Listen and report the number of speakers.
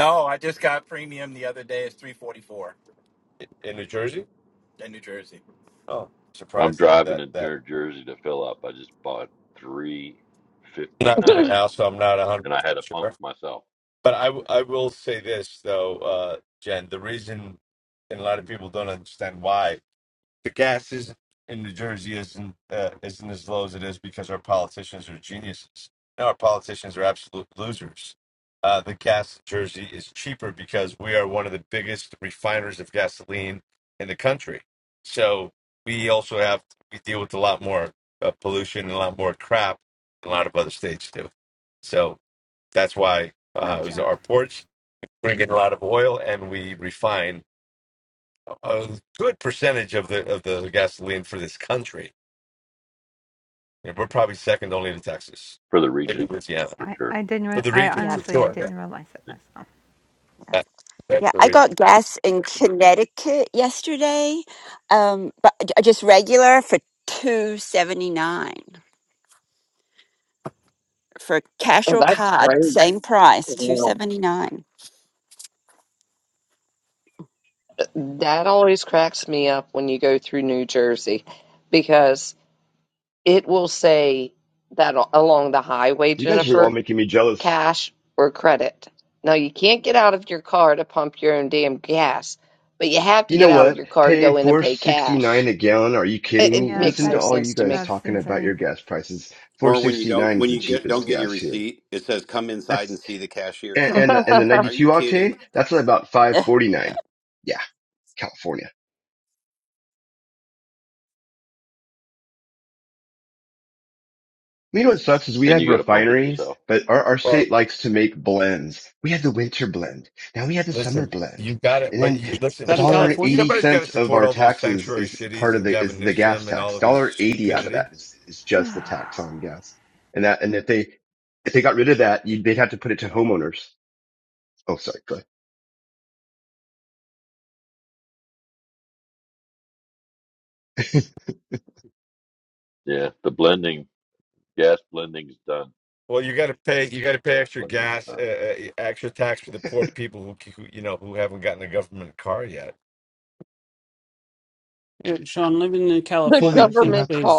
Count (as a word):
nine